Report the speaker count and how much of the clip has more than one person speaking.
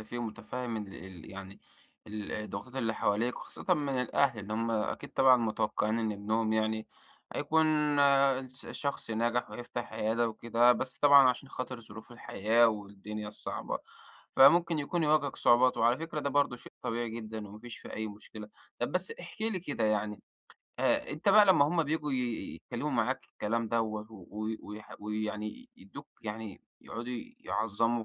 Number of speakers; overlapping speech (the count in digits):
1, no overlap